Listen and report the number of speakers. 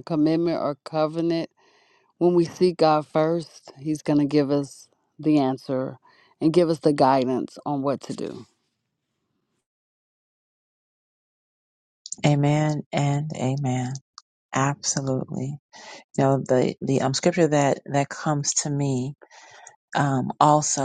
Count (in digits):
2